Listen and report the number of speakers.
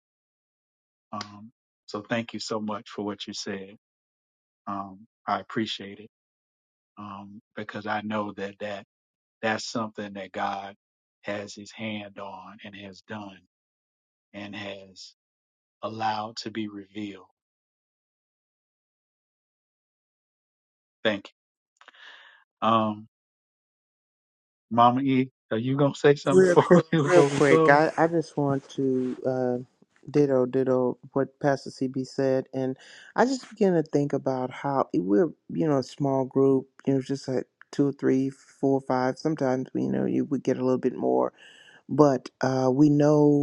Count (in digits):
2